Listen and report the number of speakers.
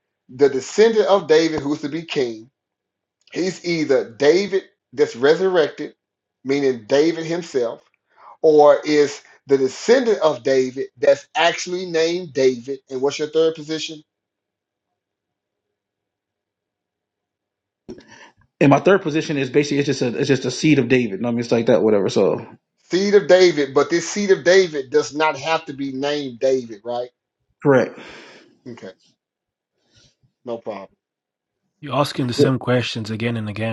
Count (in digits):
3